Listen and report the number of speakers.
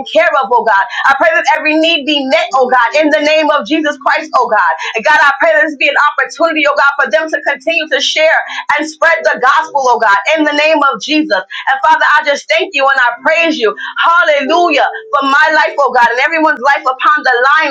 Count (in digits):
1